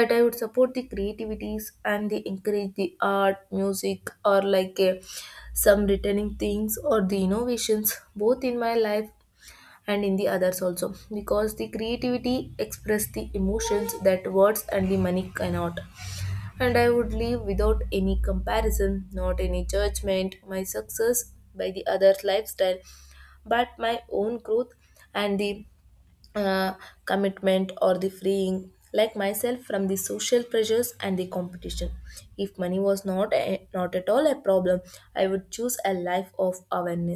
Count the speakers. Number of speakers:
1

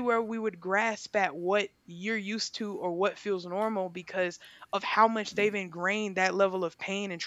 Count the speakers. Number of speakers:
1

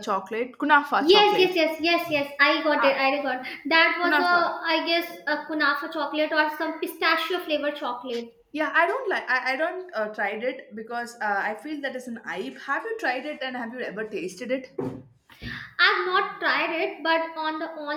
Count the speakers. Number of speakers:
2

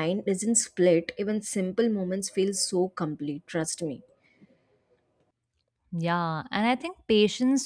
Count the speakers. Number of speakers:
2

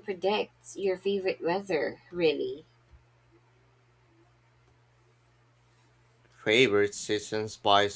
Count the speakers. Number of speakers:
2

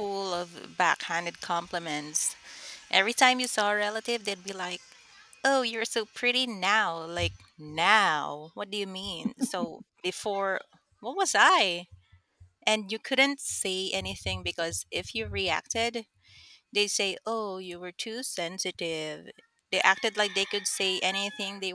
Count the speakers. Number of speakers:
1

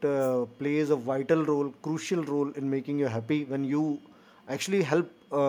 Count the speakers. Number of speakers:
1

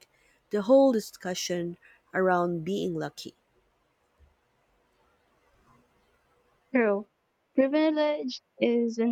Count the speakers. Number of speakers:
2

